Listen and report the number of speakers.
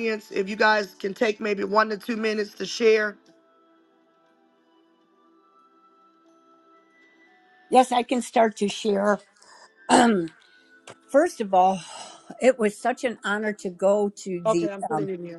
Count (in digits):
2